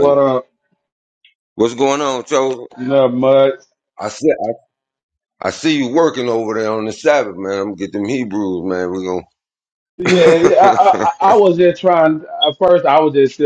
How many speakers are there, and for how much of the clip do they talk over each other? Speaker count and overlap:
2, about 1%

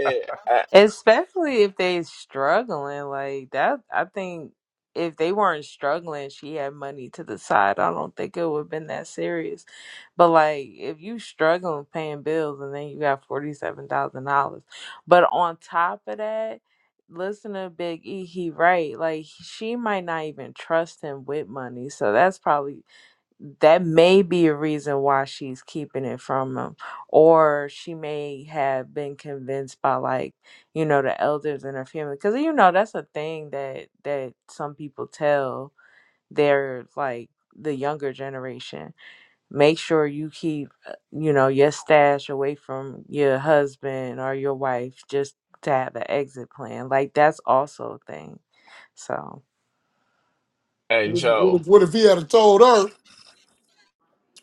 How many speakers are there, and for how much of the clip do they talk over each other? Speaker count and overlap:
3, about 1%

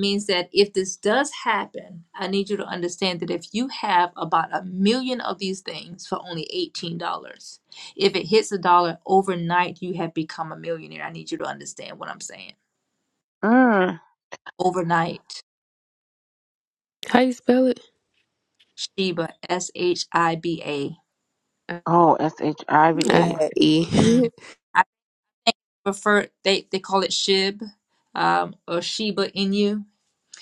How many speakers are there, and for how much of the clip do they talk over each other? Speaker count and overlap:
3, about 2%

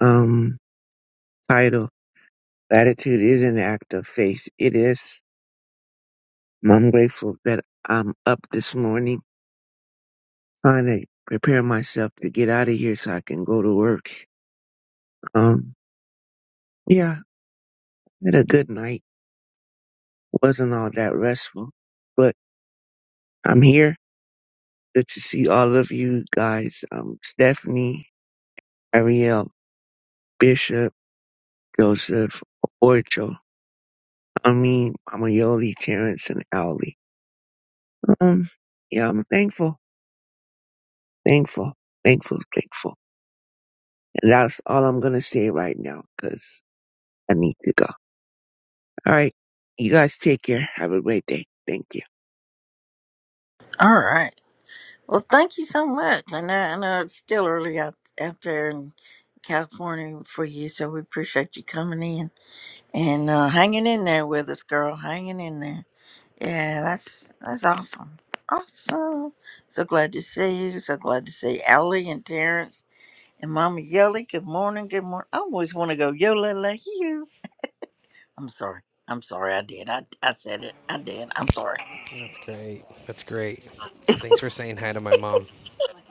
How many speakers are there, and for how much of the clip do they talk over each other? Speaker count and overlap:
3, no overlap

